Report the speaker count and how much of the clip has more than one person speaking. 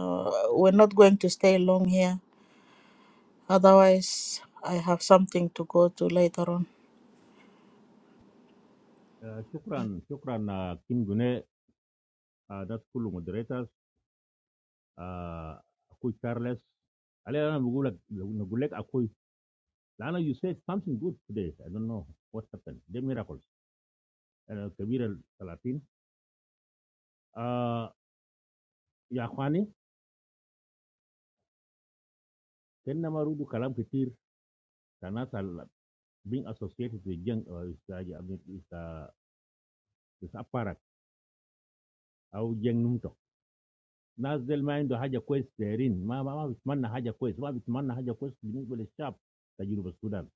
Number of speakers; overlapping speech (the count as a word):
two, no overlap